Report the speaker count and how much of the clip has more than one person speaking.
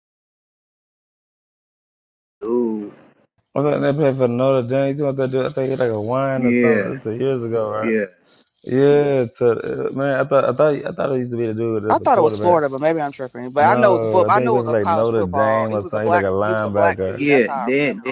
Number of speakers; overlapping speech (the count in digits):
3, about 34%